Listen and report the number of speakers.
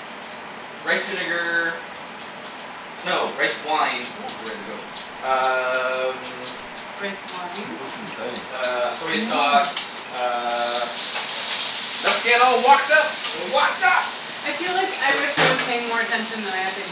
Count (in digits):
3